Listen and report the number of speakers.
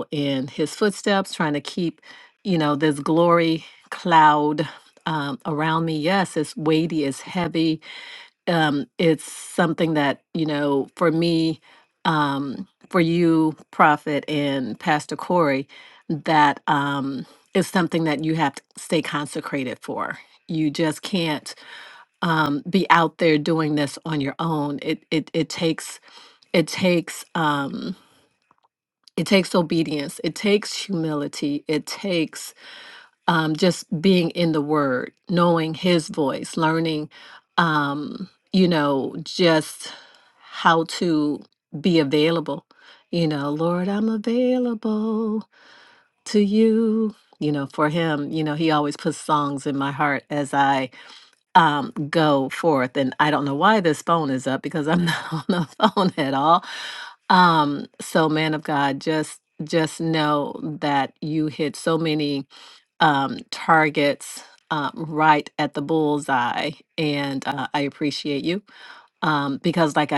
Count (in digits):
1